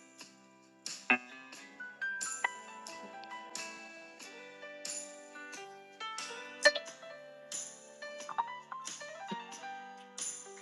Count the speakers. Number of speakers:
zero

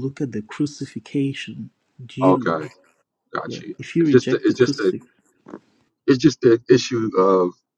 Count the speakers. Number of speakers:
two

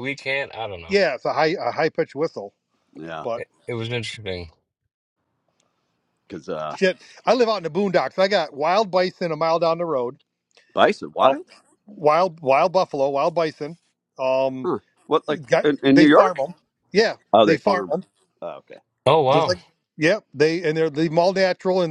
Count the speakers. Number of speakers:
three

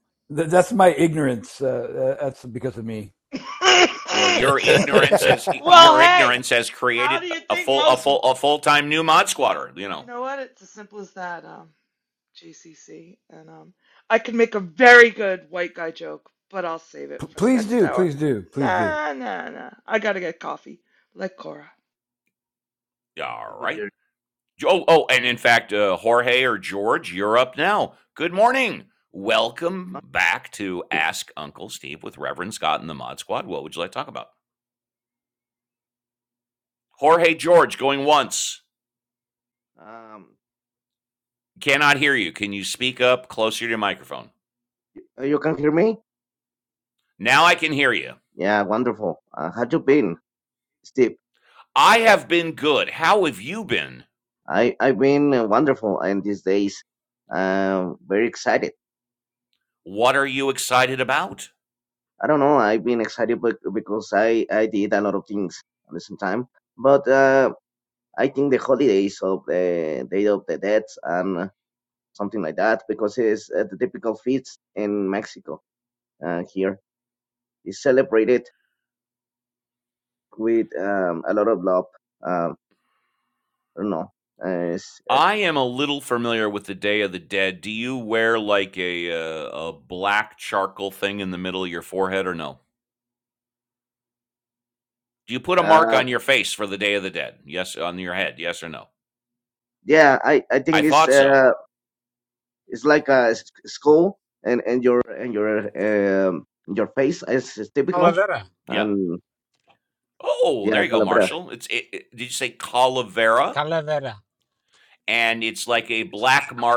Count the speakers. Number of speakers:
five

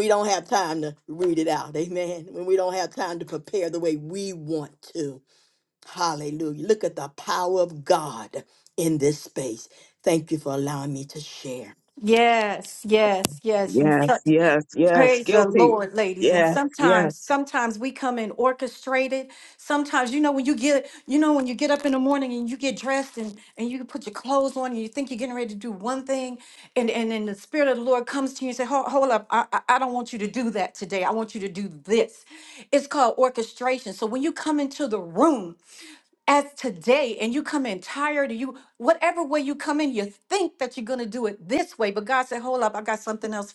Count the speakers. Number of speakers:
three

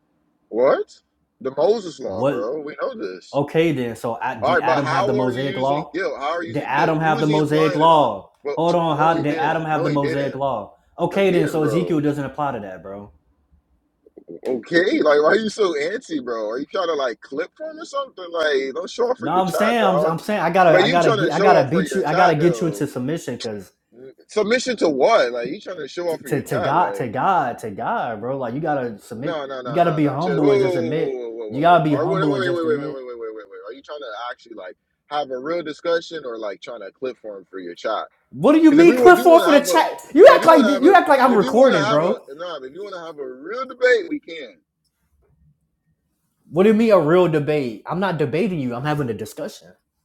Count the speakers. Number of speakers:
two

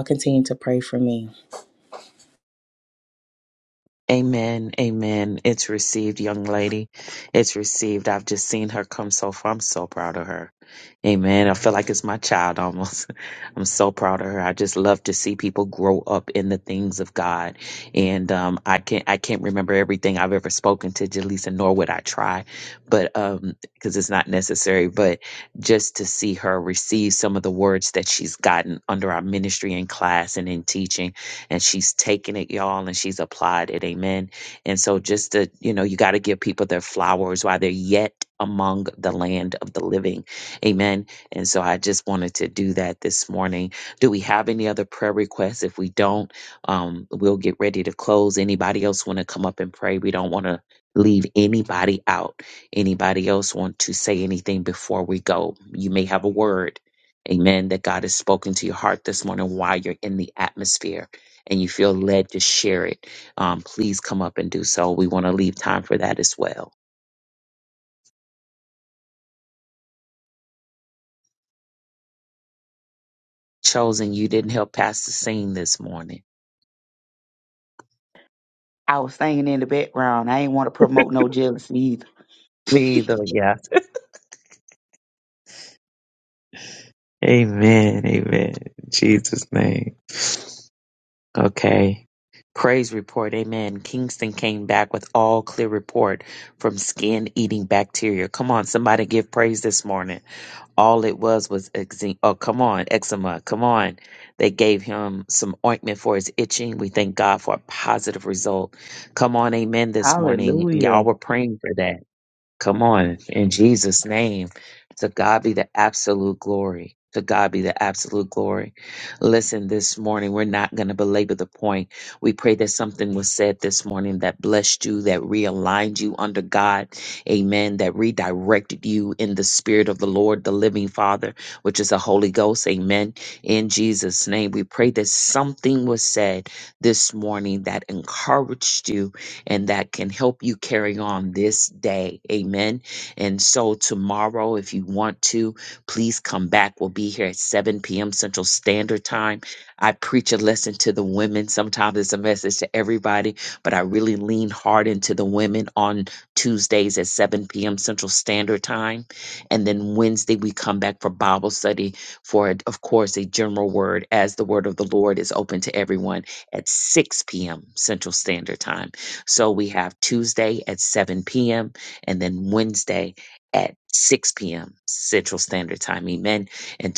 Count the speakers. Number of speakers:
three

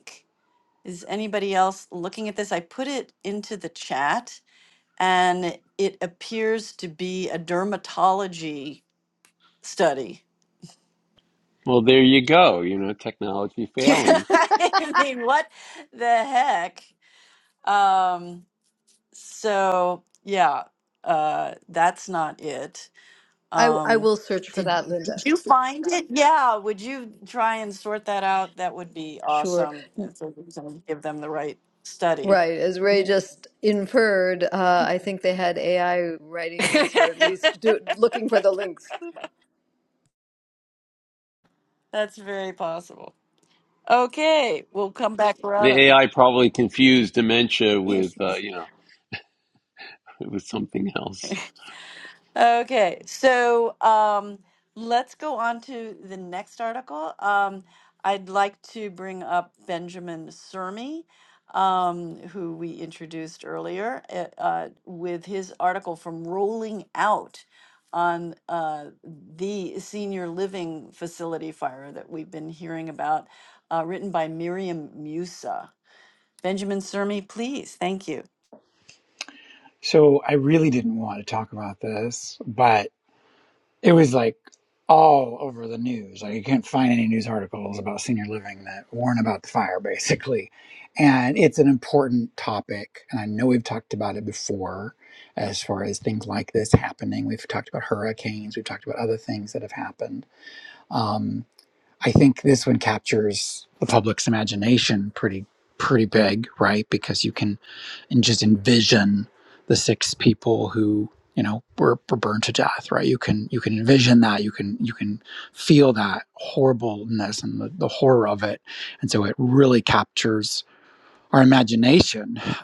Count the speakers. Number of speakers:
four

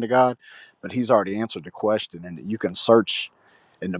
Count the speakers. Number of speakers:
one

